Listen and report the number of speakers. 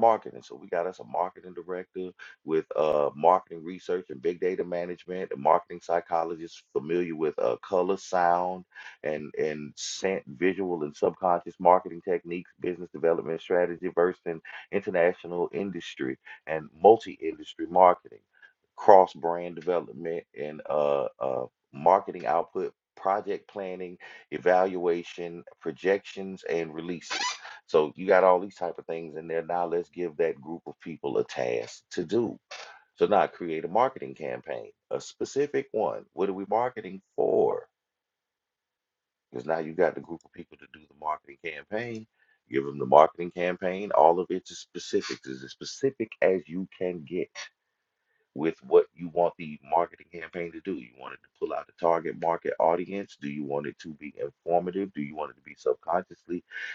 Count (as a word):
one